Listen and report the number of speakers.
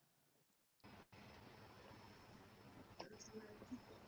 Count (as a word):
zero